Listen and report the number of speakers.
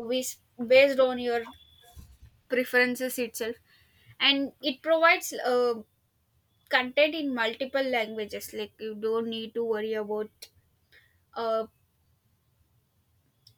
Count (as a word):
one